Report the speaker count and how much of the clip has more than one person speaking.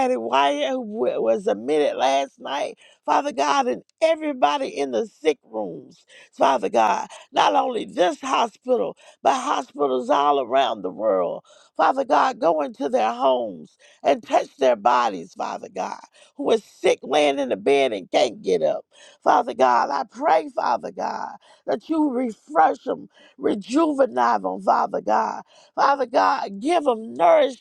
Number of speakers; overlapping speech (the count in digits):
1, no overlap